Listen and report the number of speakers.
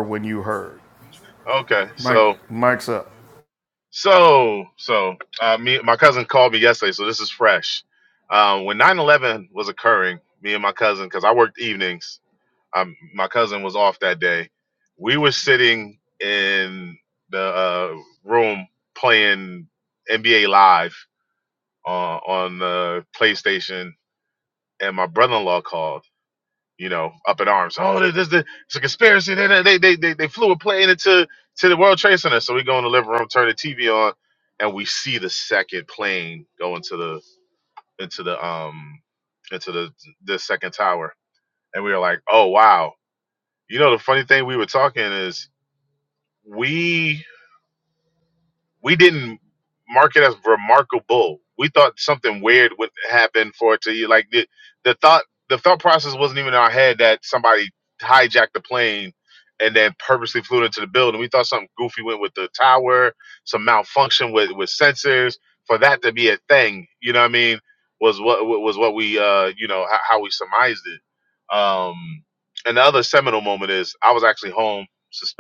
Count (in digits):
2